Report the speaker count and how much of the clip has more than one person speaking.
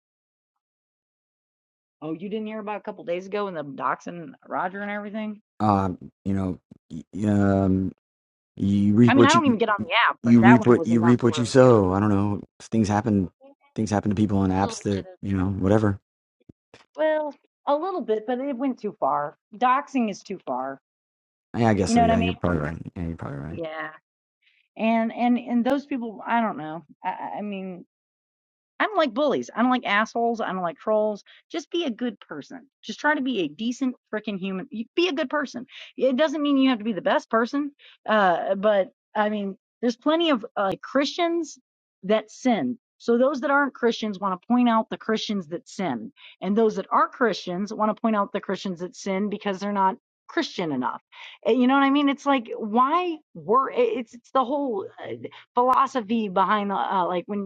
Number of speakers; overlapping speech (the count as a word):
two, about 5%